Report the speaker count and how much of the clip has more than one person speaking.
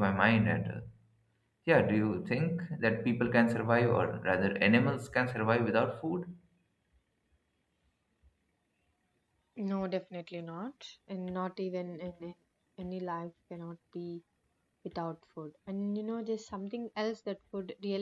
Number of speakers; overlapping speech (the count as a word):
two, no overlap